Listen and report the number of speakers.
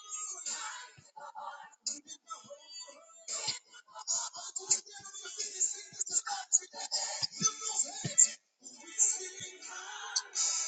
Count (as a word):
zero